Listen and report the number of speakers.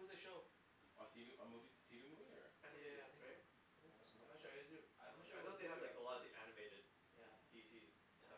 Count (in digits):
3